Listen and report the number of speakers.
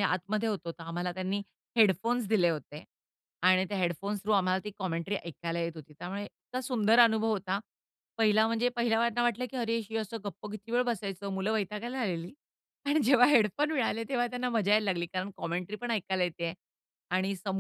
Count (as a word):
one